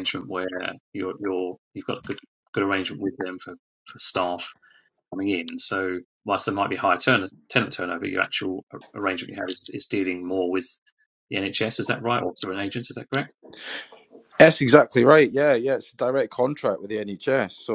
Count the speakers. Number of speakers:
2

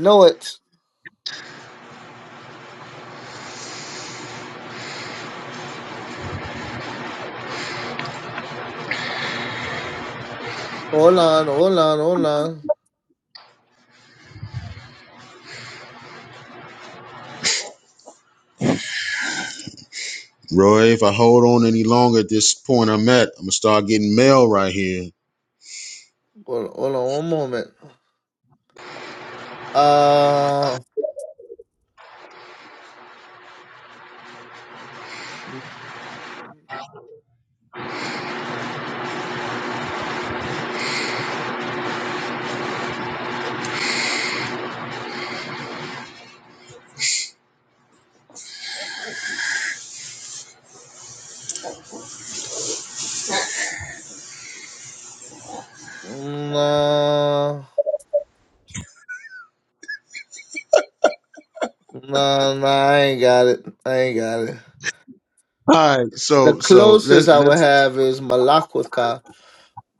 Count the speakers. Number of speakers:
2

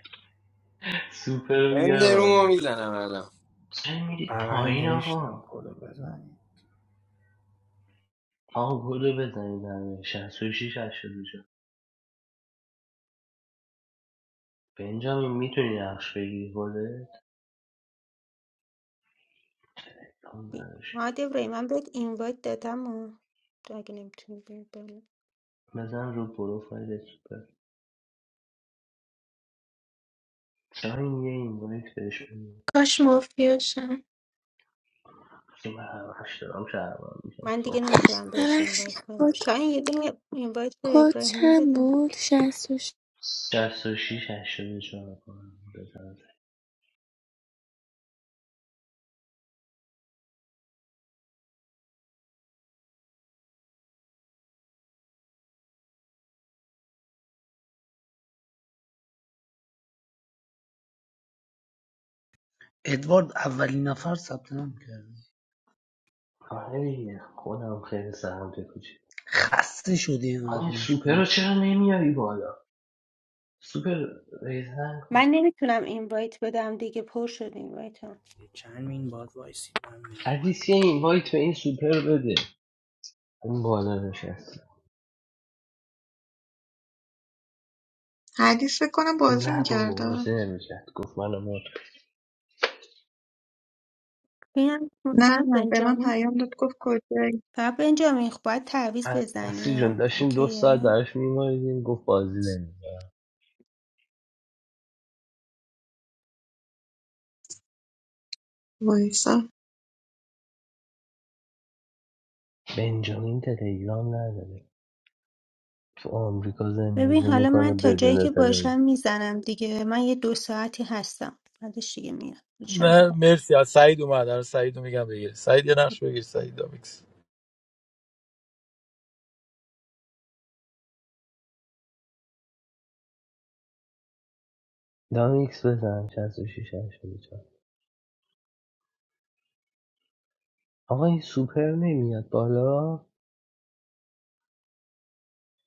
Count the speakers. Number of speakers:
9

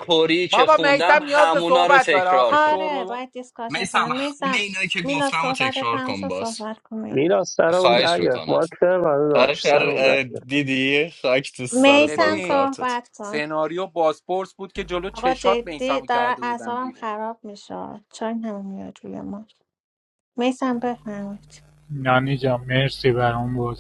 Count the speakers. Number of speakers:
5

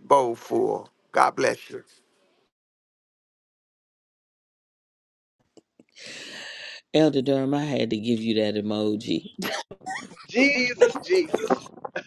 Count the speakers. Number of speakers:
3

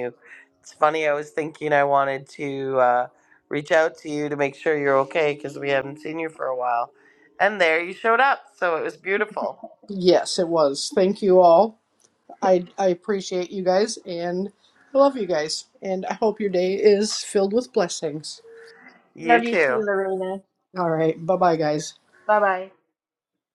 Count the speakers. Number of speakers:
3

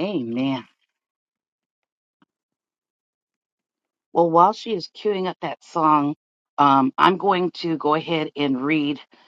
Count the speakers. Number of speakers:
1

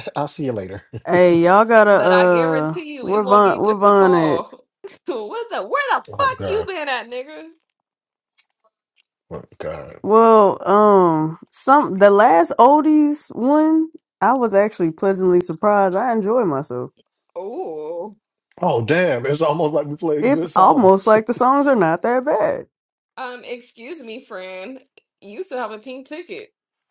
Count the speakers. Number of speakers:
3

